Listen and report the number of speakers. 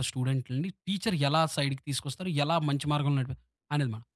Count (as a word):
one